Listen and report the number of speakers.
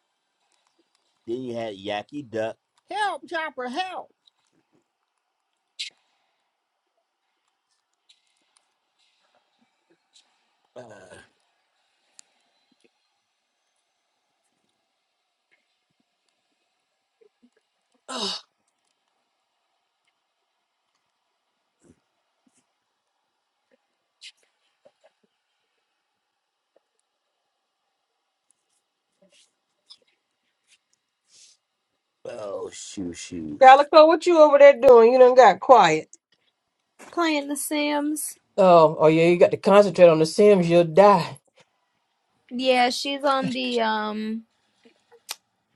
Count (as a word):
three